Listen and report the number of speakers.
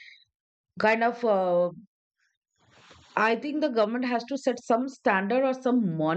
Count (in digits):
1